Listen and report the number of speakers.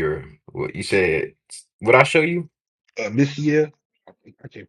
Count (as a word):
two